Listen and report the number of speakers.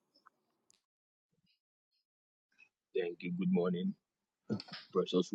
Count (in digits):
1